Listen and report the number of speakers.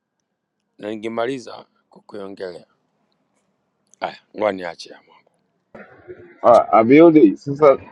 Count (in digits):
2